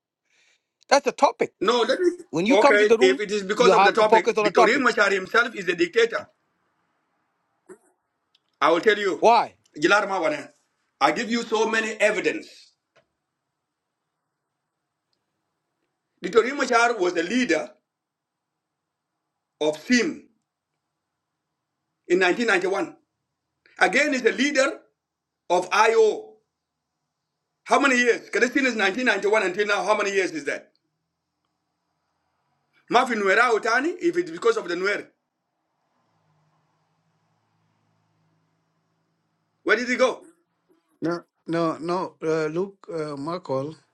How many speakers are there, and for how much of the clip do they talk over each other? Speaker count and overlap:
three, about 4%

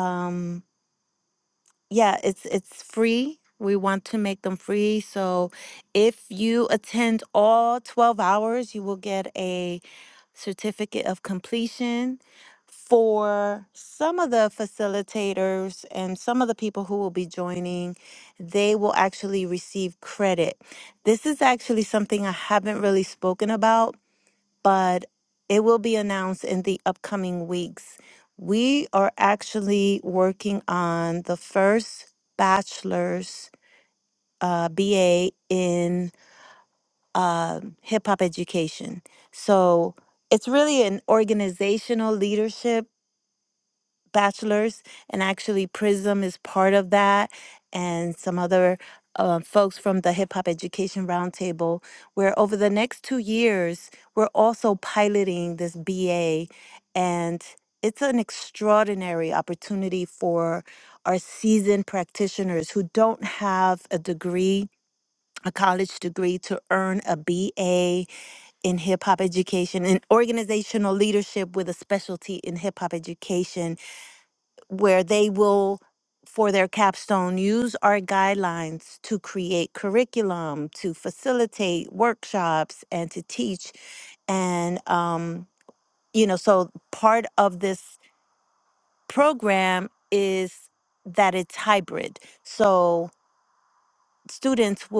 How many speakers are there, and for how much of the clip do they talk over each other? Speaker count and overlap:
one, no overlap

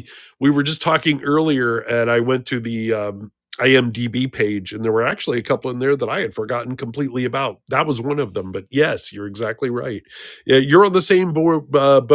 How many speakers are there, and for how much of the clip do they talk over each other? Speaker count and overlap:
one, no overlap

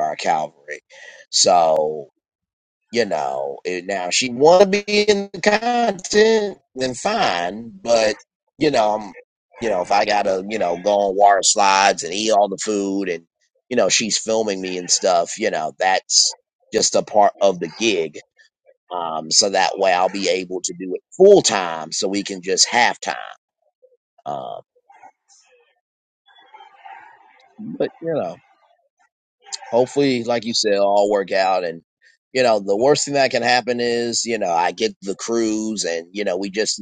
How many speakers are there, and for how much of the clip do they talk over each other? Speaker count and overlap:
one, no overlap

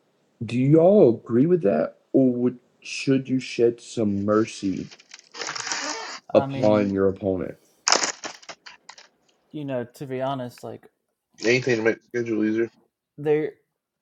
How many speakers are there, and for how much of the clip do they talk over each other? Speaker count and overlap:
three, about 4%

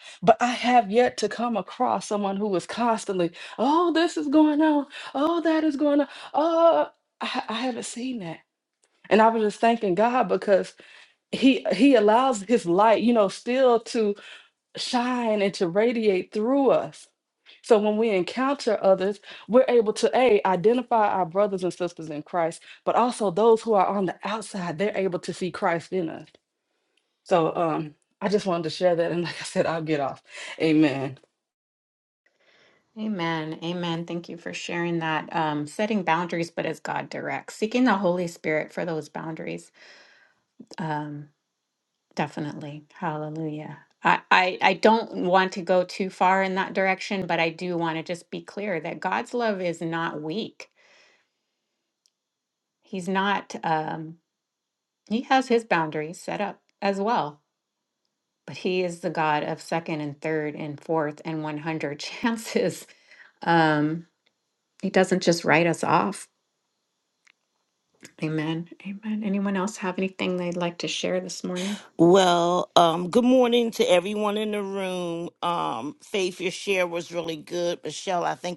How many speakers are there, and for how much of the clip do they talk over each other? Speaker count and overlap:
three, no overlap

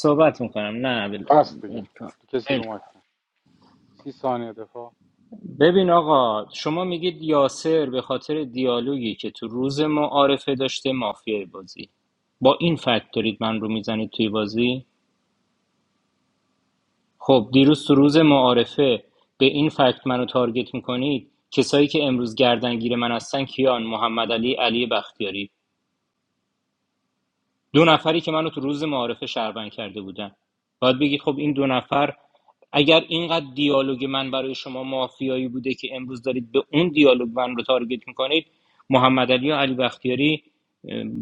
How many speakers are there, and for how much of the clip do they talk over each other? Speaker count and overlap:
two, about 2%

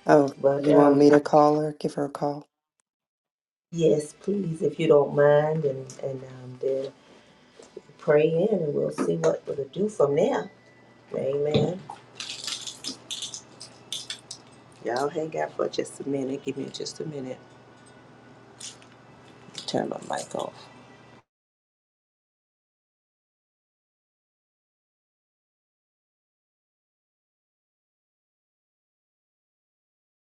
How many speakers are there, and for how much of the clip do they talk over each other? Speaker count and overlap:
two, about 2%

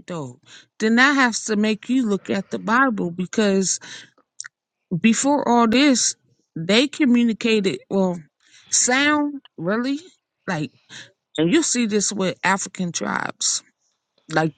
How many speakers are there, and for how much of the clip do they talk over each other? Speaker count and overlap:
one, no overlap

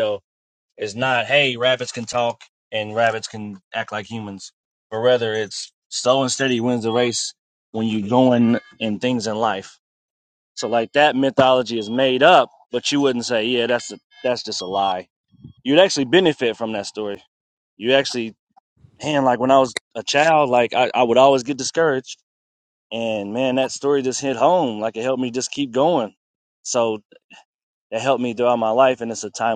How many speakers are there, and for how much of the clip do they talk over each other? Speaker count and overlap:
one, no overlap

